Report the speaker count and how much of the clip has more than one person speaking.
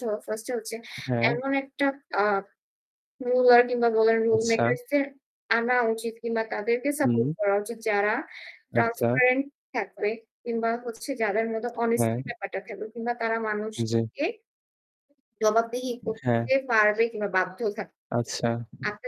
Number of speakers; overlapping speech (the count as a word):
two, about 9%